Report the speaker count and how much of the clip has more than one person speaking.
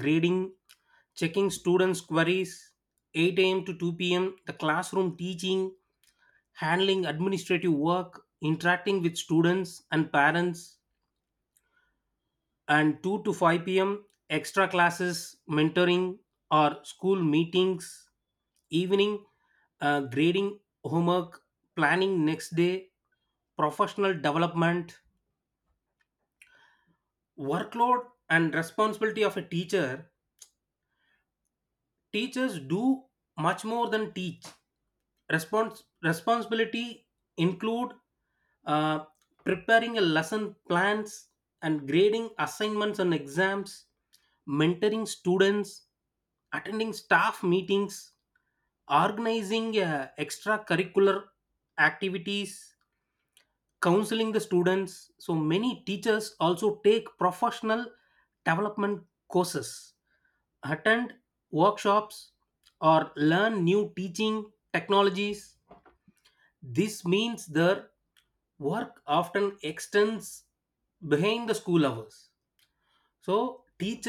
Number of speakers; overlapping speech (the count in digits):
1, no overlap